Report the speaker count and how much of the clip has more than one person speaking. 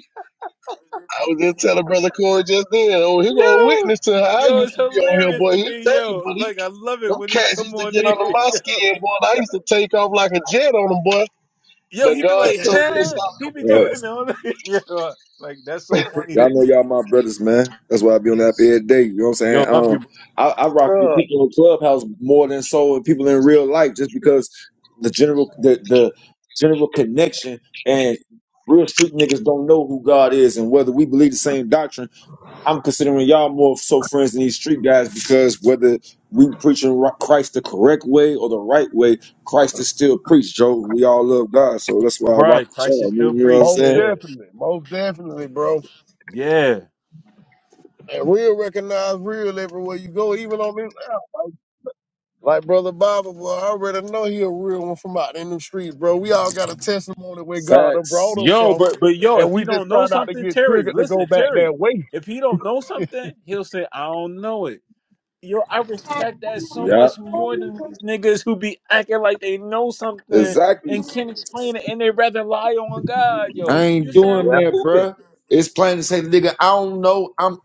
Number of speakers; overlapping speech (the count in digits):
3, about 18%